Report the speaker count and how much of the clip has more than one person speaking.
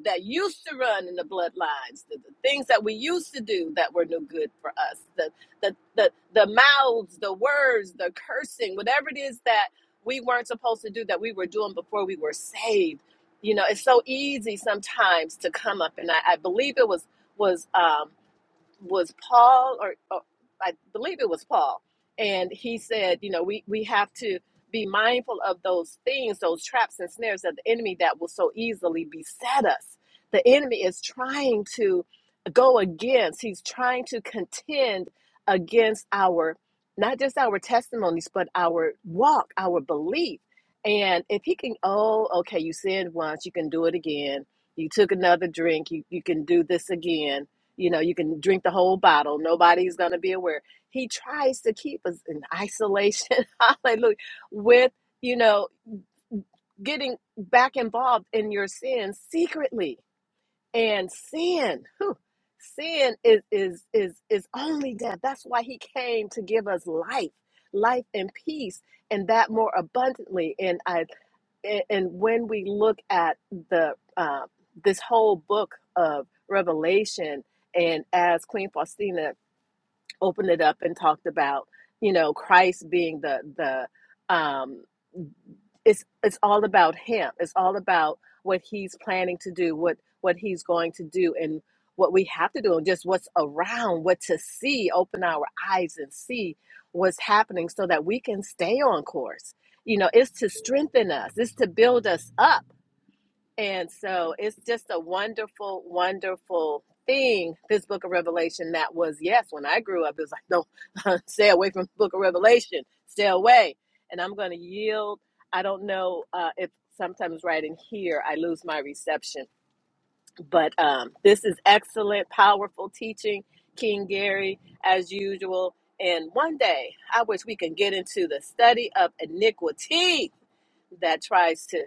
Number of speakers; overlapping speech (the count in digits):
1, no overlap